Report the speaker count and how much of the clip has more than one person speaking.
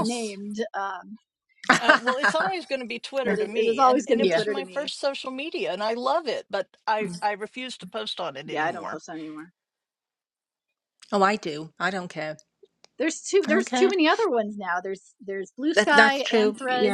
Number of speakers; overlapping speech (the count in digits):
3, about 25%